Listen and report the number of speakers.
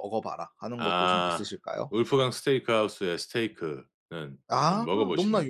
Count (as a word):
two